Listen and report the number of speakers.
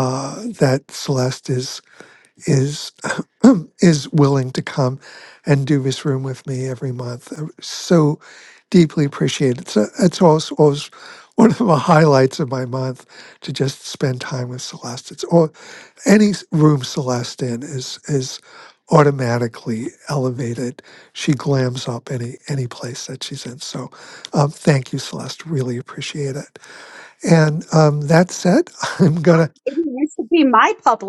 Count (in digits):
2